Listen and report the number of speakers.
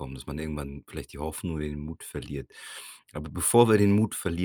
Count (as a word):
one